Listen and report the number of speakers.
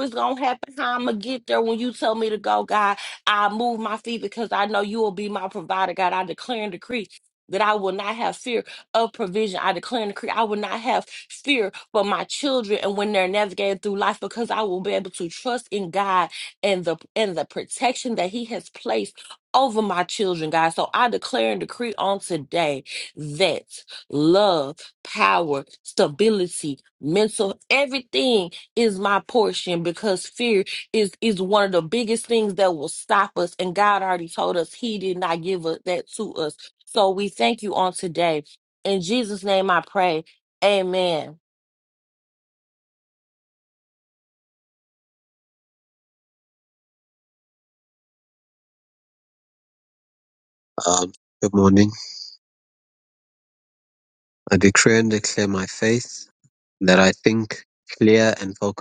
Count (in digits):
2